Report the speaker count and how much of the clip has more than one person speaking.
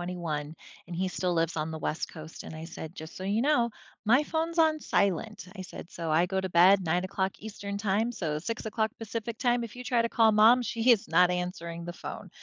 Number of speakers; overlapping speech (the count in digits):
1, no overlap